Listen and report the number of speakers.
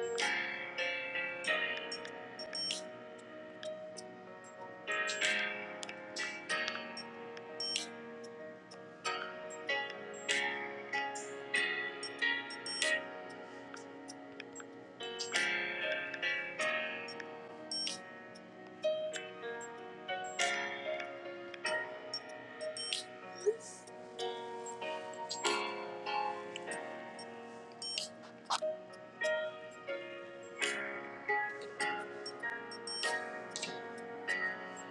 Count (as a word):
zero